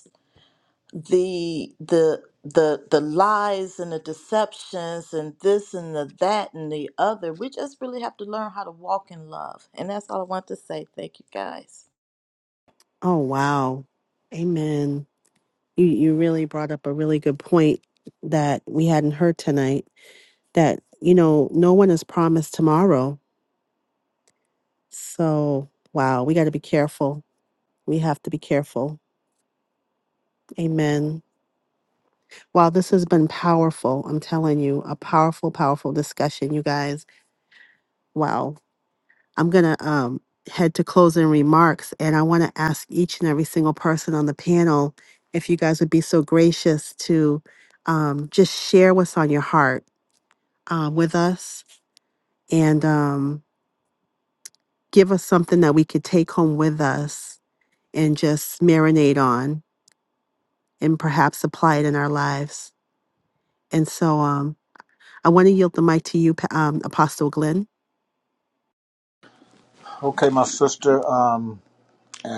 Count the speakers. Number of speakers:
3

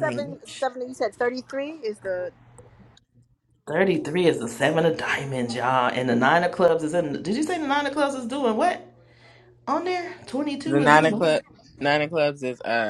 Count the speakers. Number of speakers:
3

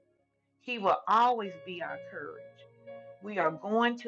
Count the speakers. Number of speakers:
1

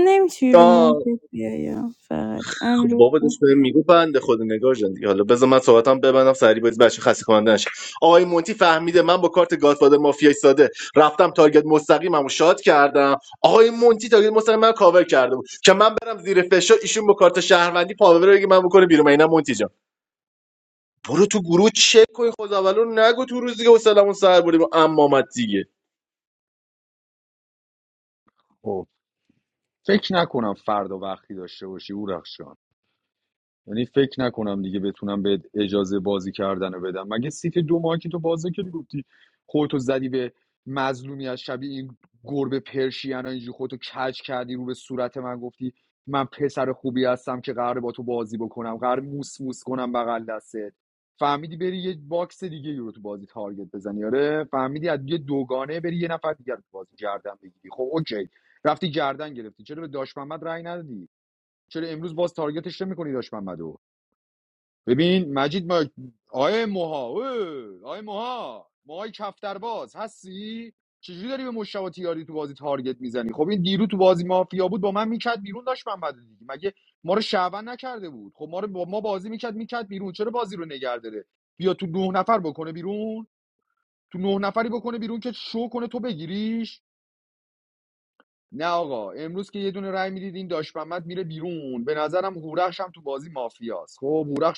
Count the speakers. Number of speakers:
3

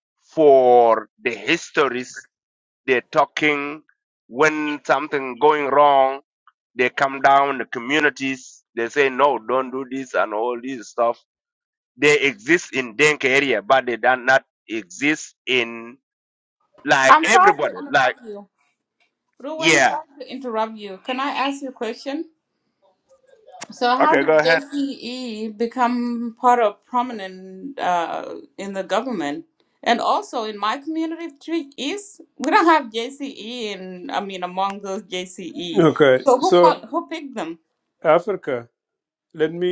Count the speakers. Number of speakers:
3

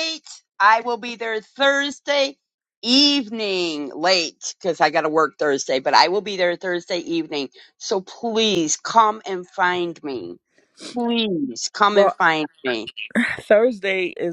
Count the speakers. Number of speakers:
2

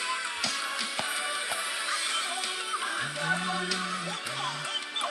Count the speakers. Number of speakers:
0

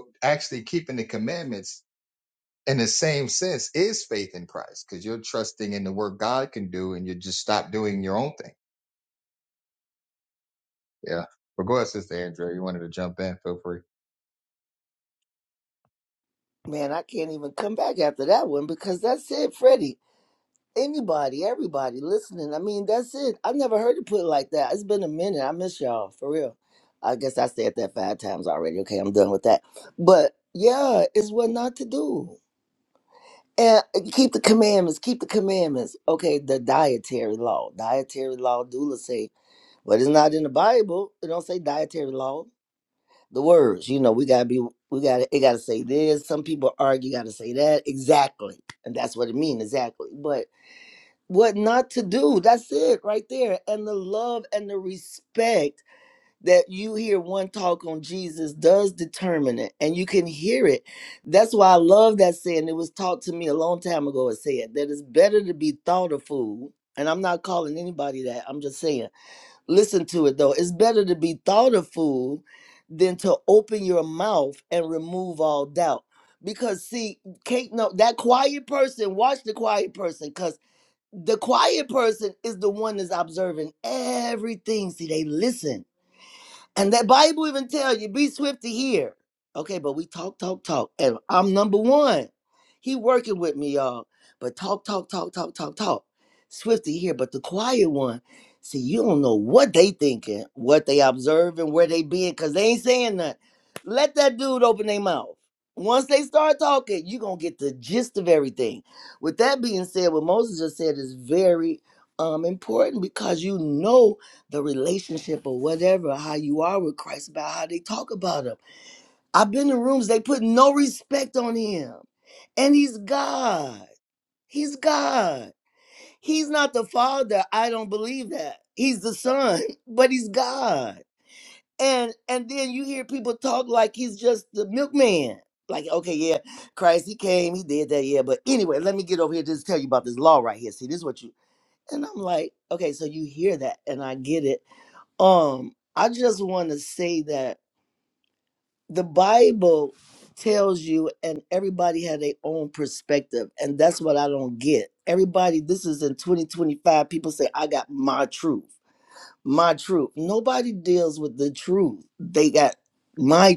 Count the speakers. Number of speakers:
2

